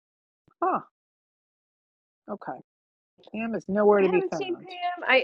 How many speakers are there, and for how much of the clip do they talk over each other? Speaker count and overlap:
two, about 11%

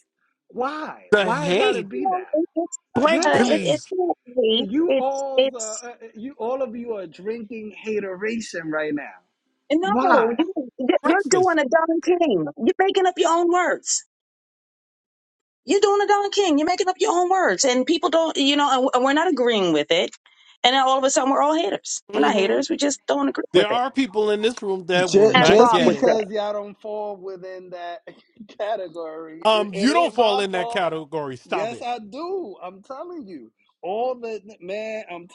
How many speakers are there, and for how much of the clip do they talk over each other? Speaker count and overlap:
three, about 19%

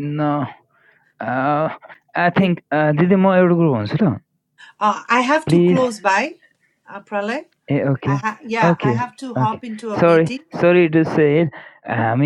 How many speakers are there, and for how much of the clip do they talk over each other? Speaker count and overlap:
two, about 16%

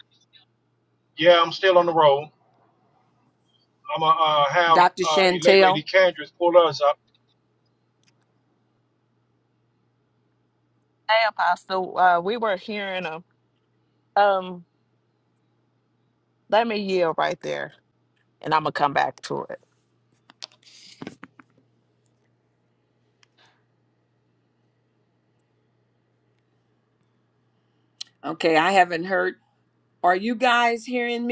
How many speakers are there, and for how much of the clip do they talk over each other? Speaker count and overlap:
three, about 4%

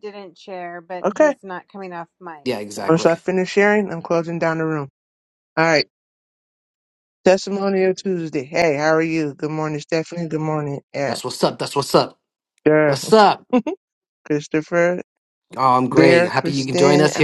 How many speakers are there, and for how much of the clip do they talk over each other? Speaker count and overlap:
three, about 13%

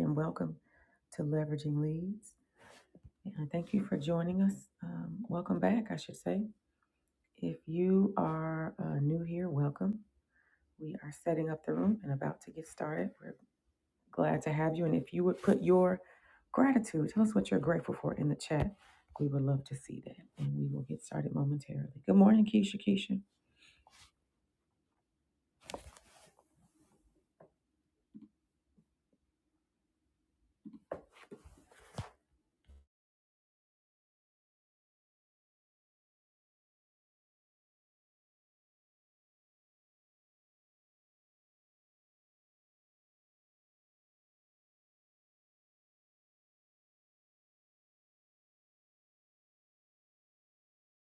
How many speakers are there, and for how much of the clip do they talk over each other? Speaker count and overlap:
one, no overlap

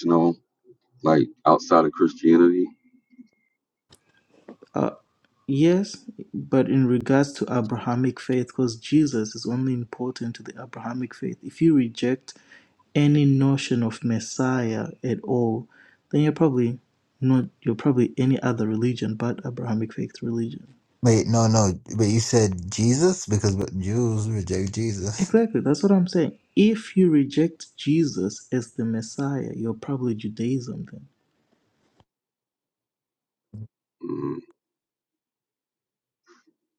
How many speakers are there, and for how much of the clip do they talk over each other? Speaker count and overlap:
three, under 1%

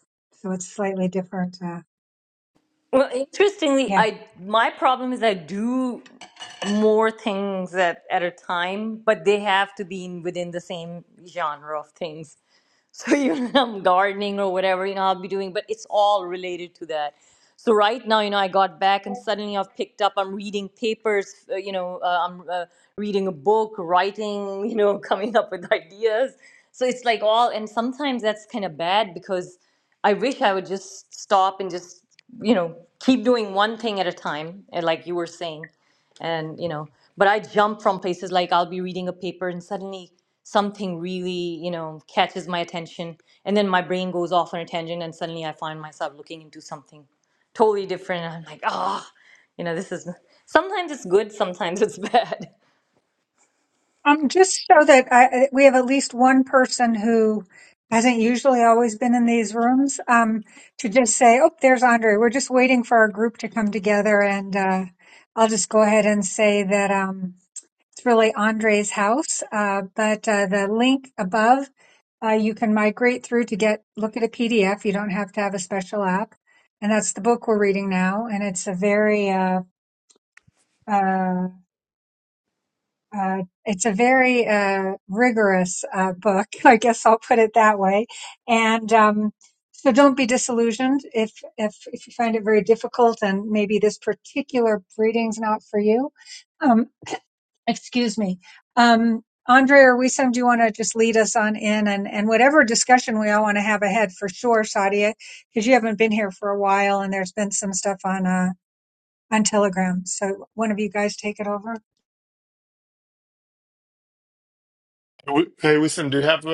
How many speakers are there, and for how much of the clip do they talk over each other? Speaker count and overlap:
three, under 1%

